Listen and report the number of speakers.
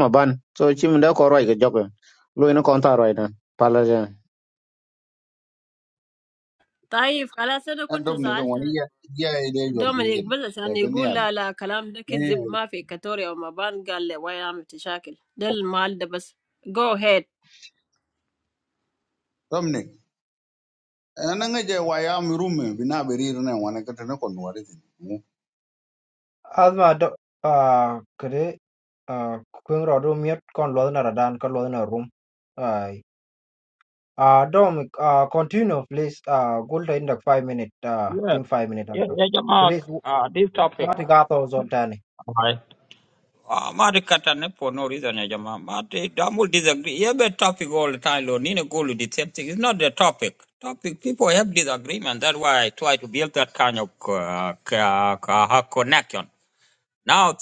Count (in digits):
5